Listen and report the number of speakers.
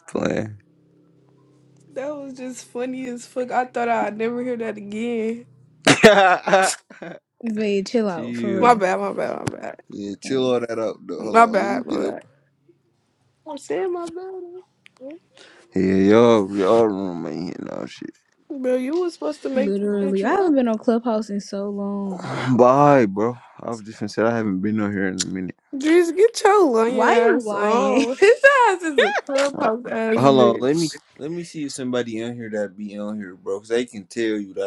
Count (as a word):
three